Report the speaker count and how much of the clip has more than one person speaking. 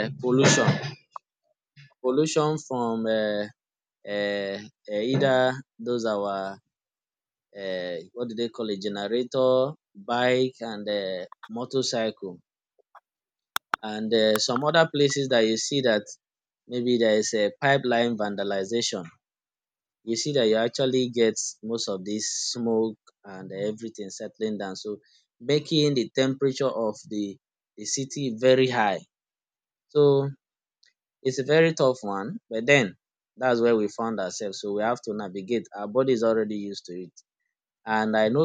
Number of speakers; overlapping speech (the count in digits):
1, no overlap